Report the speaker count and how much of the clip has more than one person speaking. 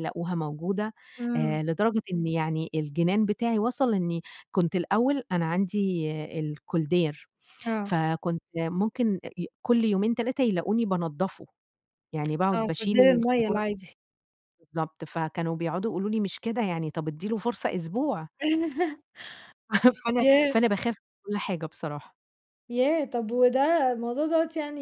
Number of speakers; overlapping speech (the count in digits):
2, about 7%